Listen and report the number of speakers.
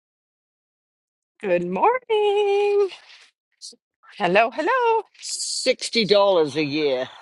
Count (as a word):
two